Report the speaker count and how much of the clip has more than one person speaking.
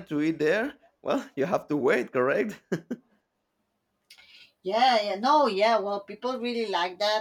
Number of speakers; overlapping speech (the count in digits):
2, no overlap